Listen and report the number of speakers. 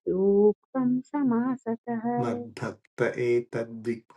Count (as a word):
two